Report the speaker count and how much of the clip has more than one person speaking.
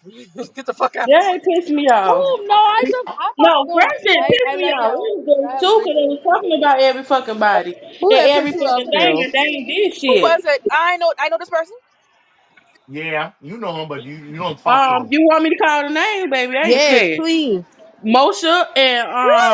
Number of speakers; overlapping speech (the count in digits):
5, about 30%